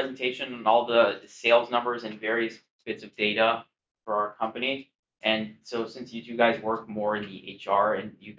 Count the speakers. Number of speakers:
one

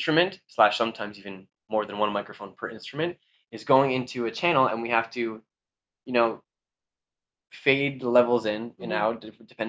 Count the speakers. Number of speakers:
one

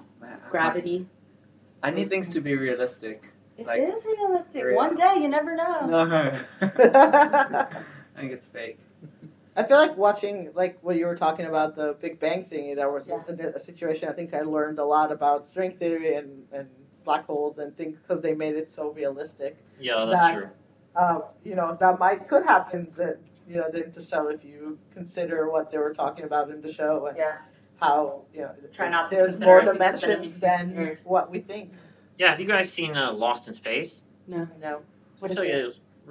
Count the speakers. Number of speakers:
four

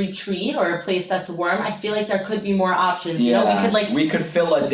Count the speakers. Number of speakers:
two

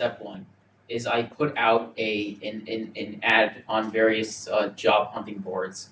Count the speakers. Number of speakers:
one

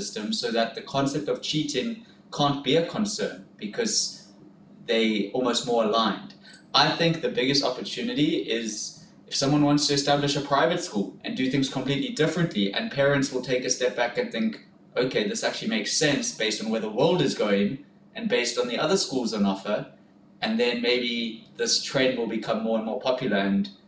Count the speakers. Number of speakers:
one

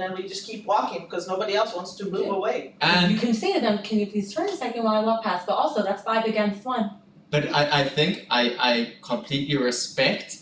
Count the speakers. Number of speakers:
three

